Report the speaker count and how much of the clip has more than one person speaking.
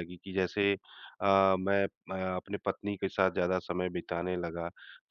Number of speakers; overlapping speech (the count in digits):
1, no overlap